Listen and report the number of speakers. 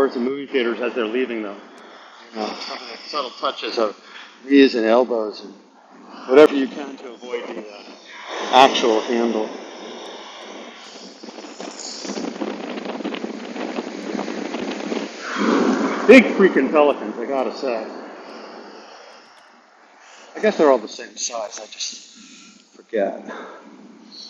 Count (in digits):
1